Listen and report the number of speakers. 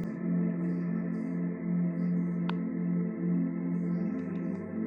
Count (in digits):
0